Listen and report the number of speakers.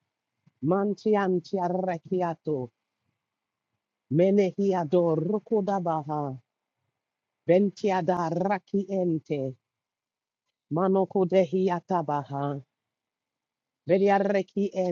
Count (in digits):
1